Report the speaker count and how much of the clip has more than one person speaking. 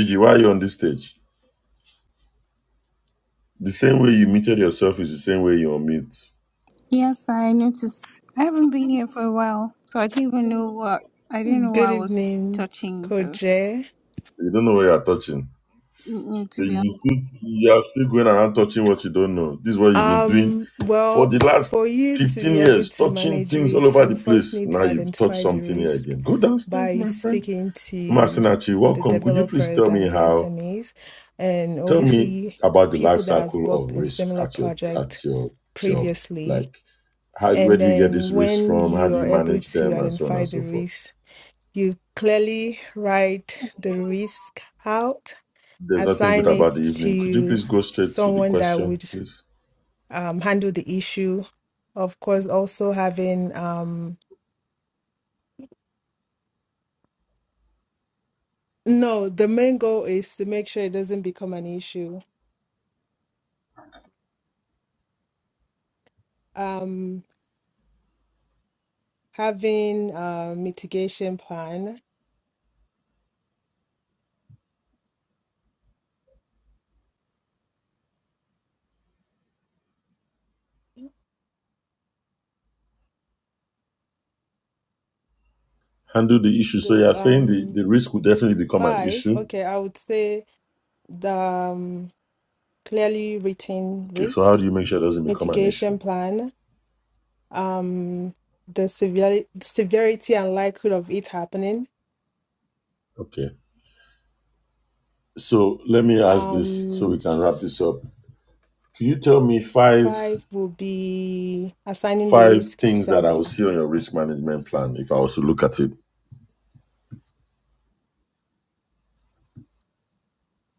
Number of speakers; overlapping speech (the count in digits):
3, about 19%